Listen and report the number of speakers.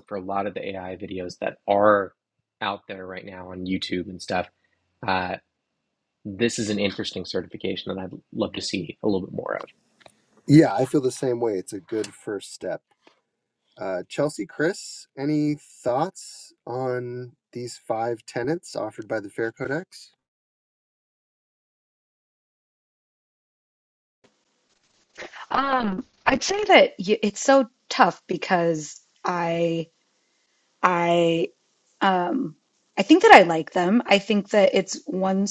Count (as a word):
three